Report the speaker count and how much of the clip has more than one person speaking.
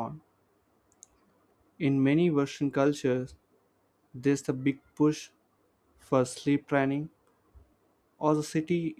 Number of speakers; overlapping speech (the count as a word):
one, no overlap